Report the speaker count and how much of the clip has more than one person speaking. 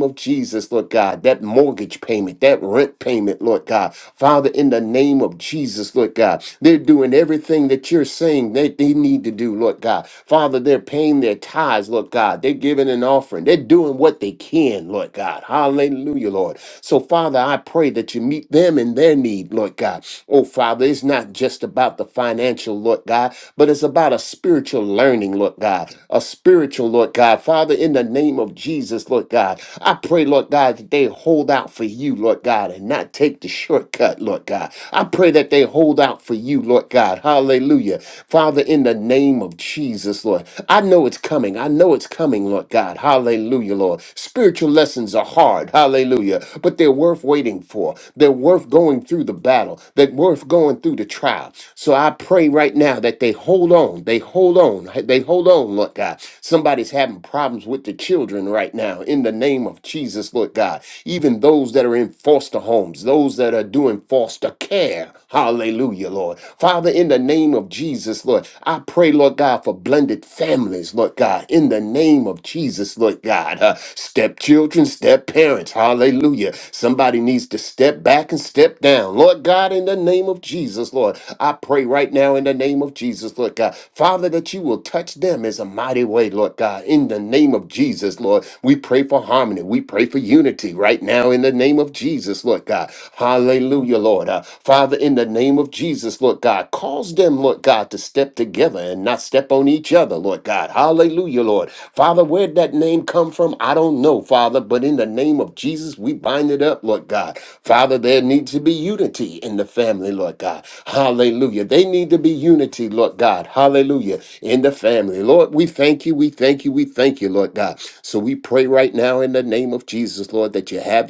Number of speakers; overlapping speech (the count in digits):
1, no overlap